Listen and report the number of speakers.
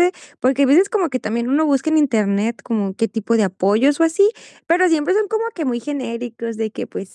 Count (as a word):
one